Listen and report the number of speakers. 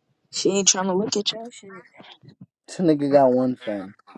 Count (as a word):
two